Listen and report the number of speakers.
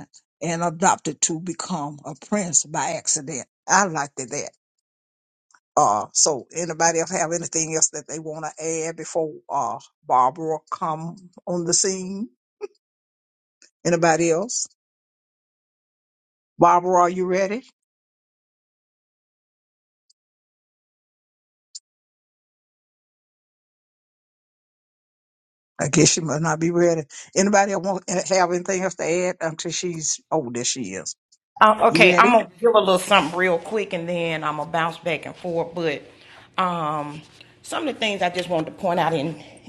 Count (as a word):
two